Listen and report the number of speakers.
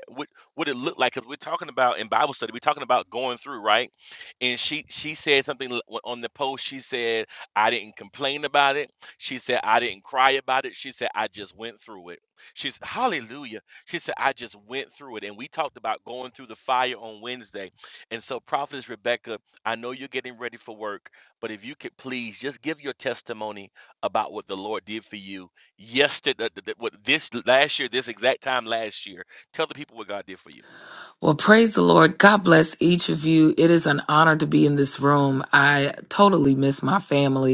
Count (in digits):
2